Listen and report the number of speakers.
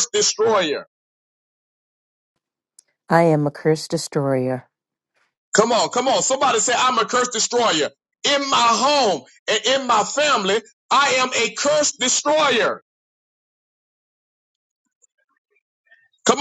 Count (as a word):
two